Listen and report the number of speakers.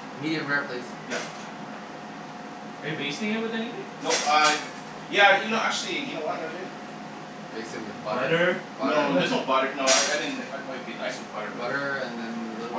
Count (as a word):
three